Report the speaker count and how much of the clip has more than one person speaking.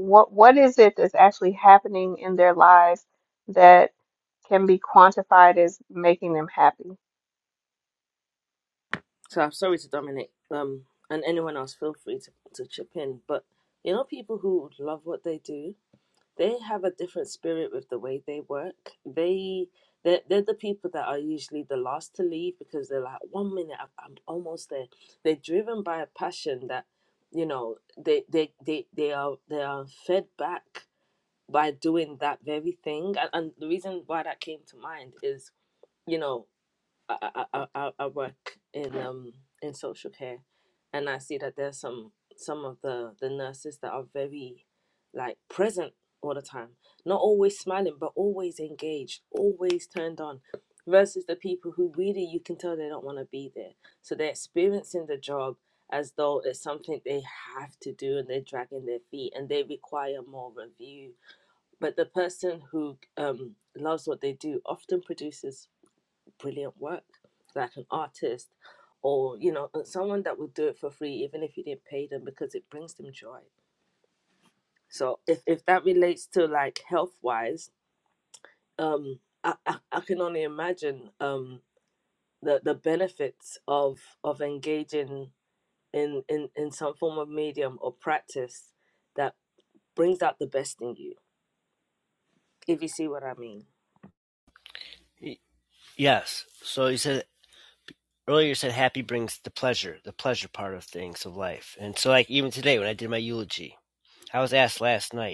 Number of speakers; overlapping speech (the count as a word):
three, no overlap